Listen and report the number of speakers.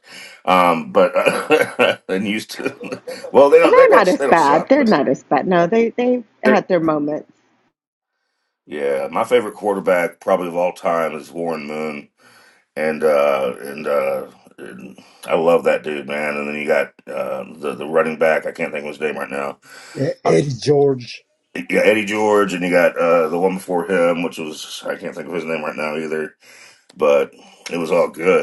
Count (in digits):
3